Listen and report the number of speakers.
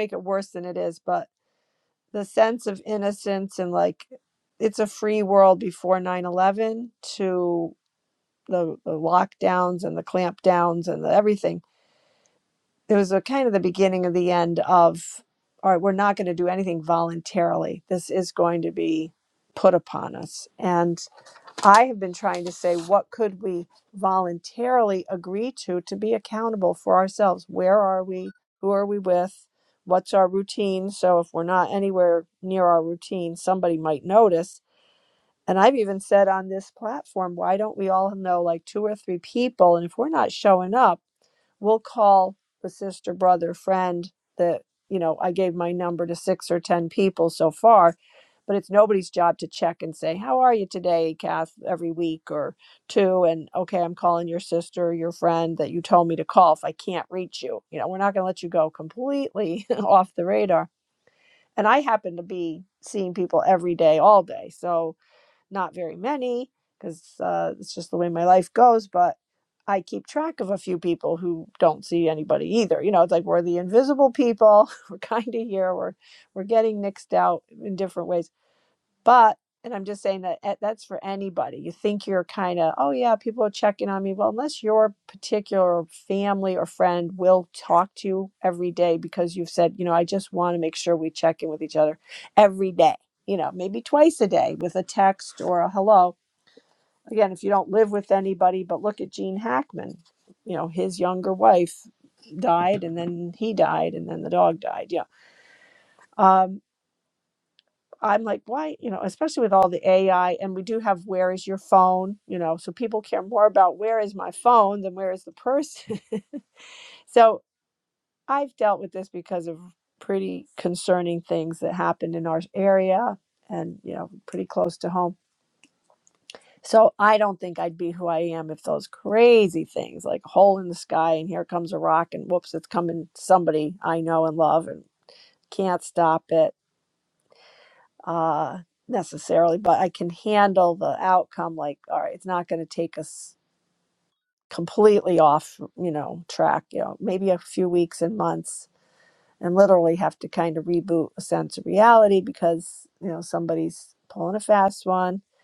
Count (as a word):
one